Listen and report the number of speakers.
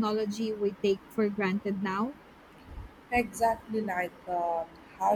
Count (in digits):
2